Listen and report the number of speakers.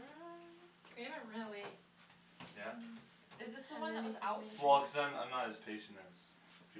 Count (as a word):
three